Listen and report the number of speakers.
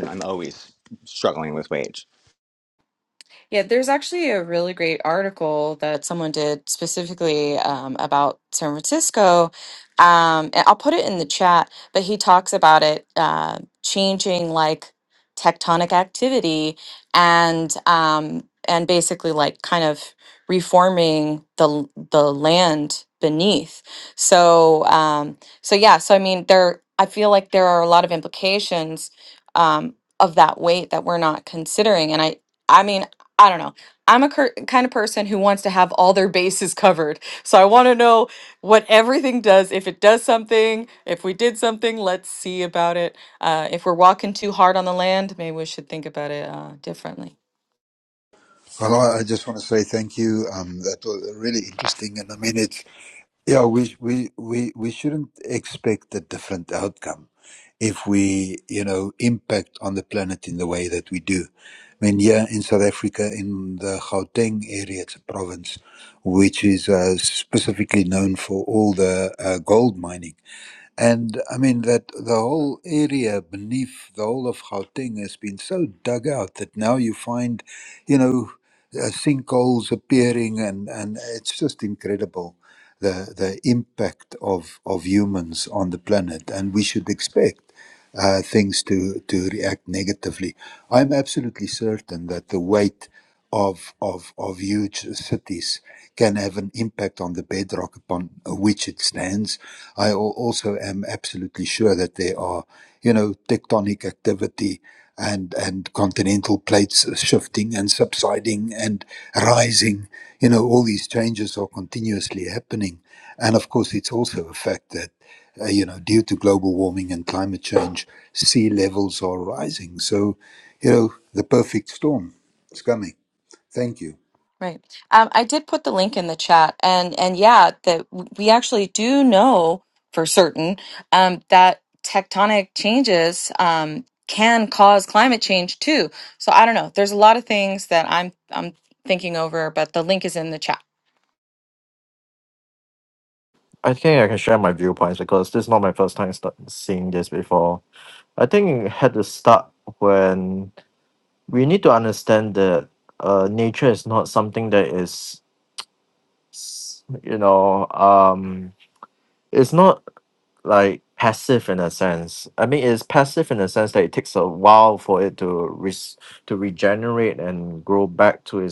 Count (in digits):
4